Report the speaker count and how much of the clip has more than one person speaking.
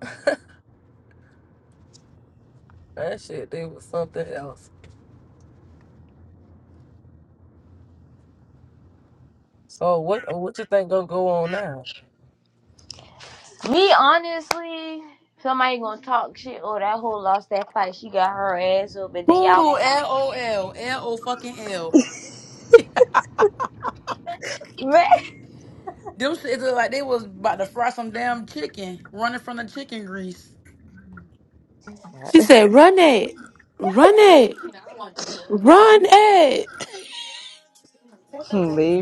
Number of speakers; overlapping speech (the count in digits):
4, about 1%